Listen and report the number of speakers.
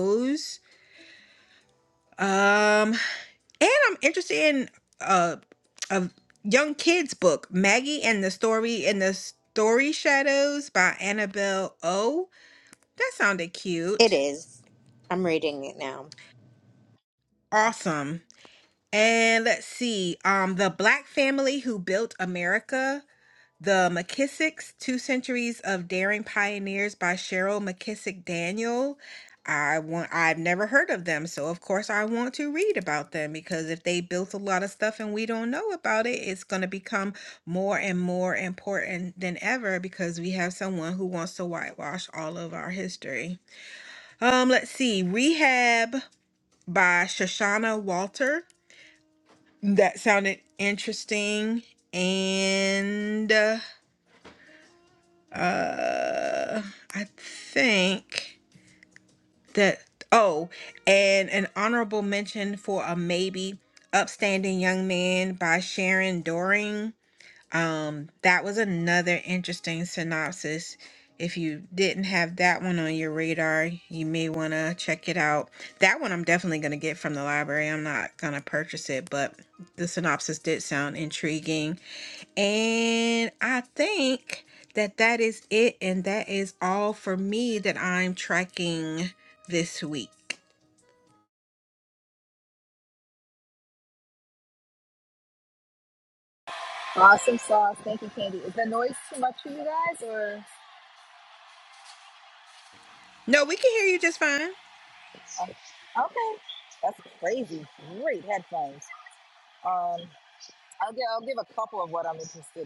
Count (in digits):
3